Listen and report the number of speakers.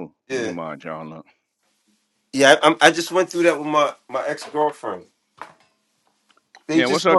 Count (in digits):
2